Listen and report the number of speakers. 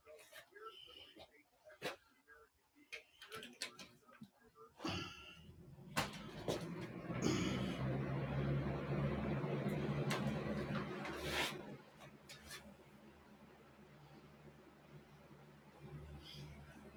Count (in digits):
0